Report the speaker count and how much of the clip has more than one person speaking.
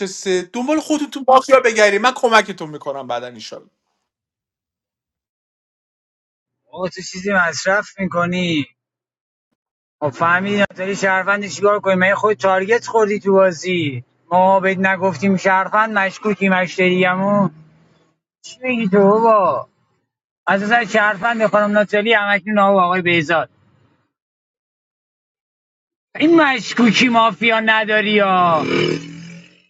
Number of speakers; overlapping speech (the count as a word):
two, no overlap